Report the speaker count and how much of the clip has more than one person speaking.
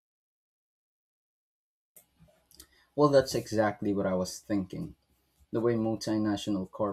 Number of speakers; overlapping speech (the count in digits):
1, no overlap